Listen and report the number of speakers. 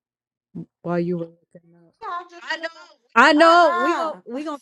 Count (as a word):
two